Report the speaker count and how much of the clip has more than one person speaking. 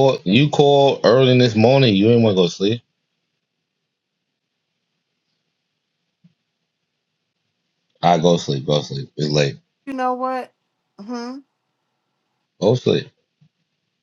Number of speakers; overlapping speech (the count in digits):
2, no overlap